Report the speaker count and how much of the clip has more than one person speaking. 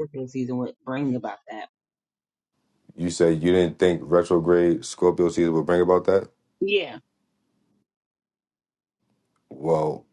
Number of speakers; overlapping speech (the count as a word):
two, no overlap